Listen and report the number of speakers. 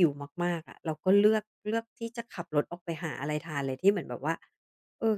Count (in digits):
1